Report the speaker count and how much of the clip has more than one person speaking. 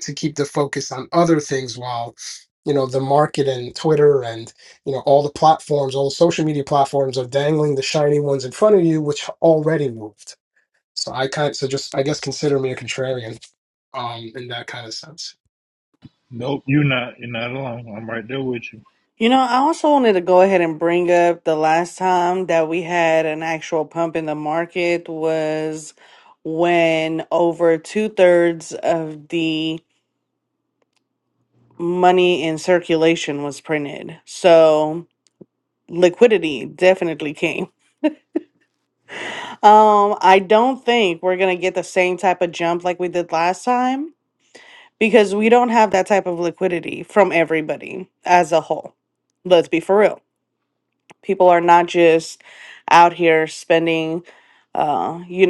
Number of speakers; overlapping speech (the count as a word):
three, no overlap